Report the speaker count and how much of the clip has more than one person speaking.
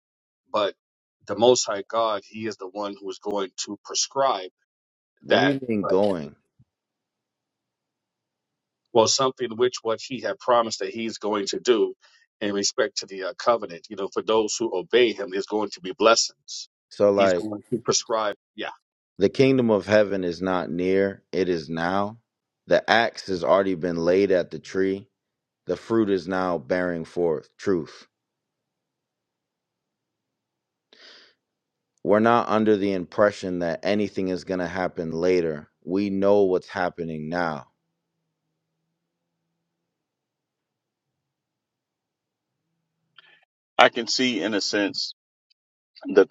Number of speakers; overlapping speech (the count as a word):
three, about 1%